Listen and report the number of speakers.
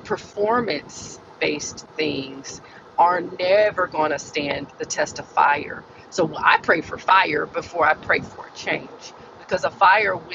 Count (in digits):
1